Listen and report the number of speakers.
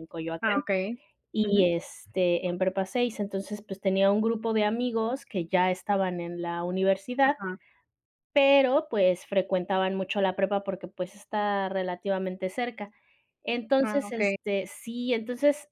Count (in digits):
2